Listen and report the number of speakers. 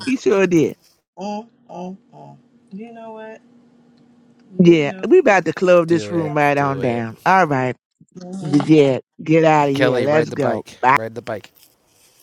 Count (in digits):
3